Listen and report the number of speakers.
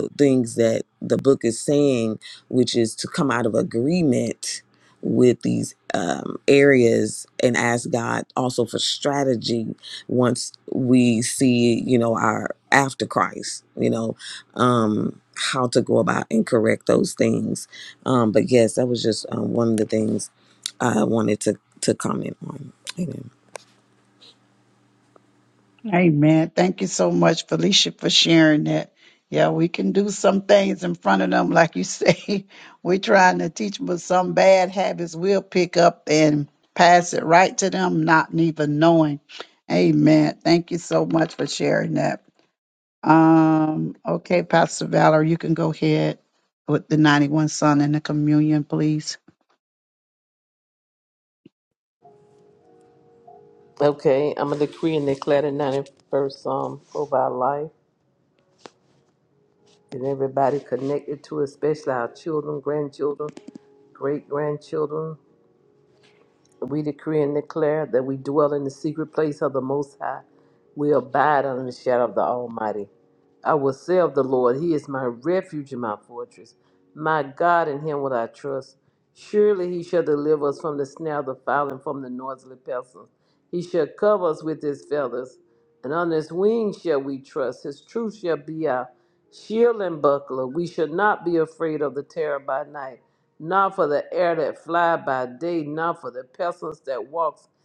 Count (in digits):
3